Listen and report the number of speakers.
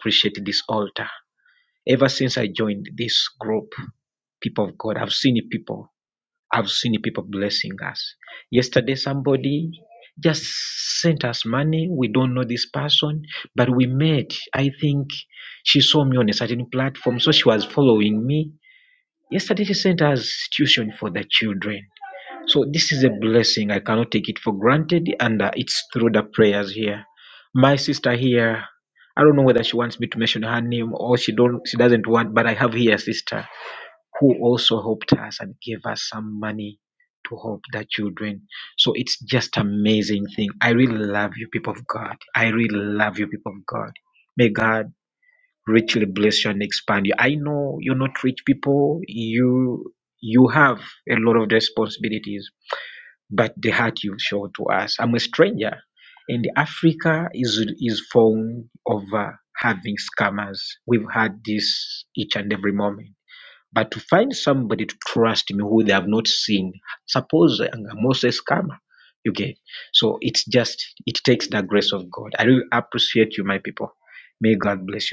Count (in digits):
1